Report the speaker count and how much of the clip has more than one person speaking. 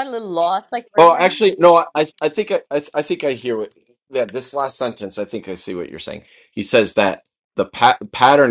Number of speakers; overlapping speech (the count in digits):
2, about 5%